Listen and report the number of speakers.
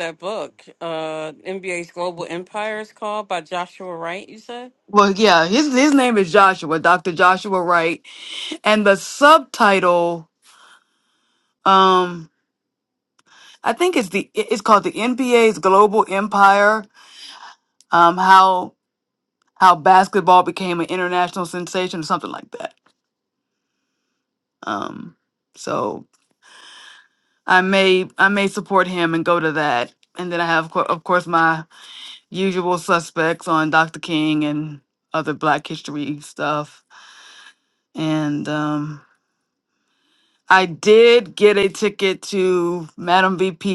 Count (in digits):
2